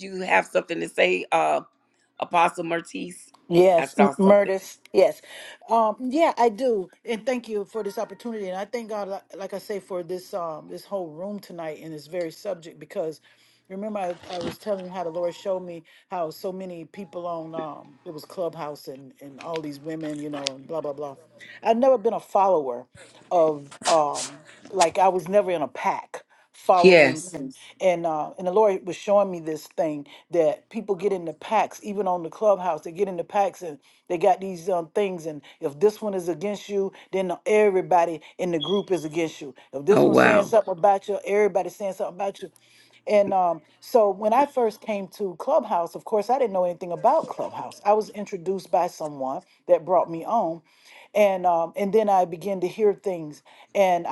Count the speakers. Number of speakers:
two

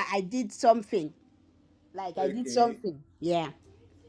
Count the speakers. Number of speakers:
one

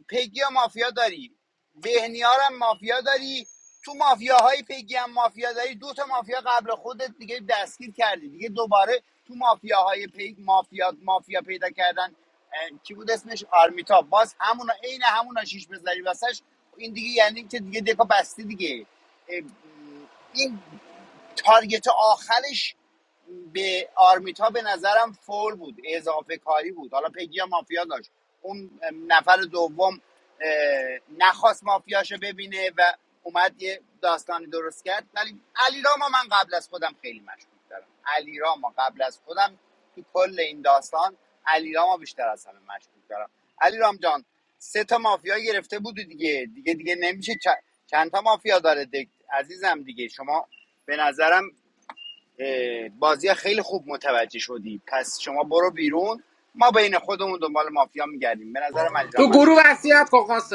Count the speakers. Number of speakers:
two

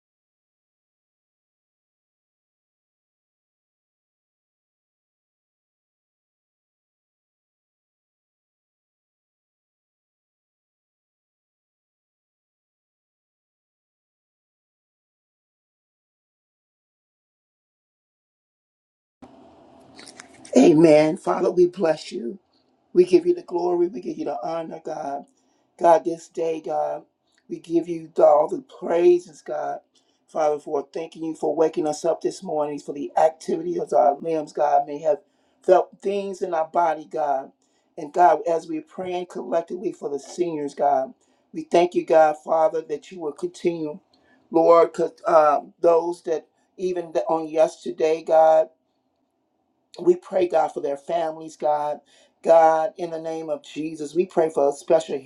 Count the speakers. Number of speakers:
one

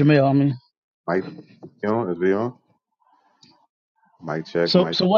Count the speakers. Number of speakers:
two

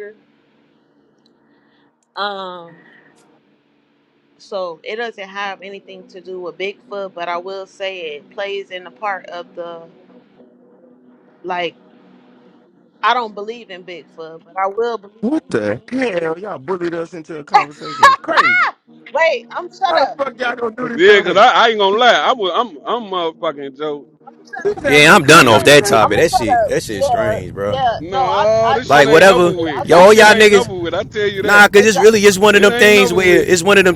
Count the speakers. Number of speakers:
four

